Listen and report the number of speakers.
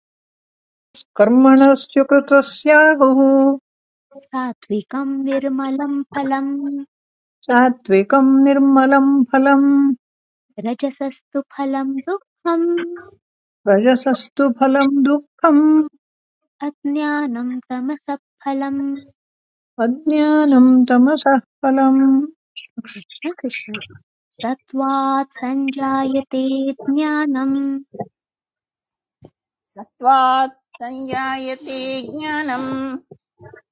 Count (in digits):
3